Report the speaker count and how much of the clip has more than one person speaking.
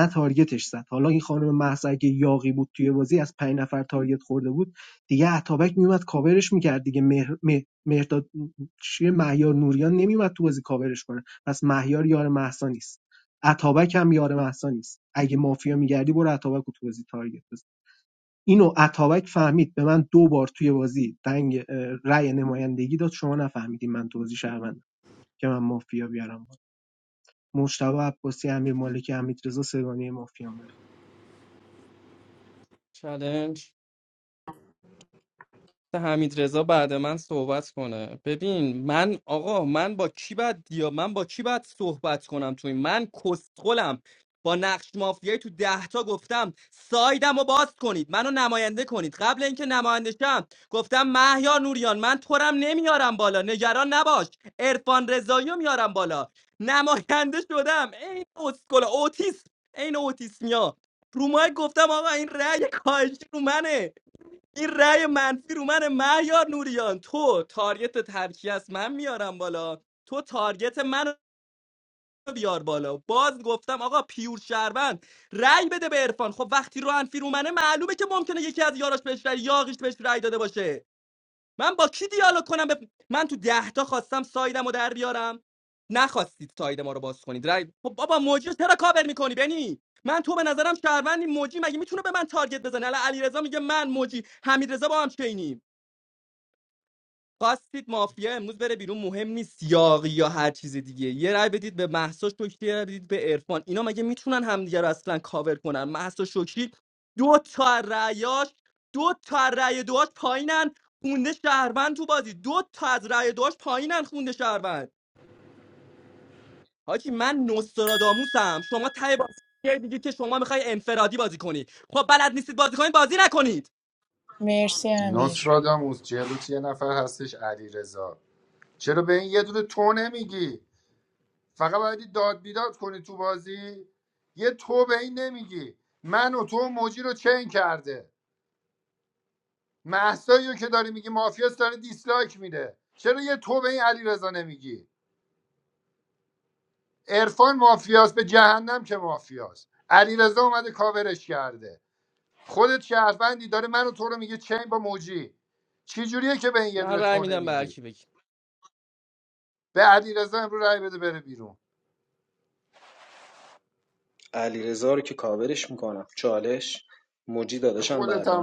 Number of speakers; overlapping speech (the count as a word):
five, about 1%